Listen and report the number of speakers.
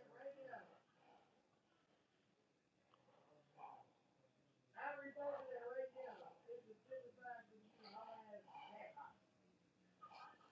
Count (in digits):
0